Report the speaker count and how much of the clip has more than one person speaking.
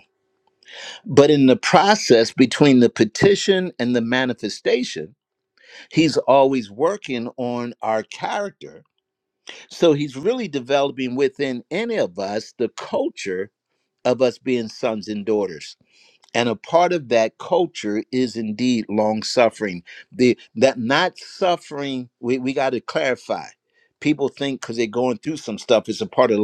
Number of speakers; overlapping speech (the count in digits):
1, no overlap